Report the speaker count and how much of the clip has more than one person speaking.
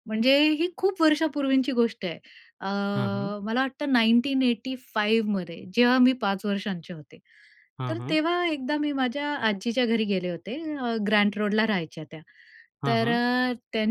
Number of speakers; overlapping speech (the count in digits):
2, about 4%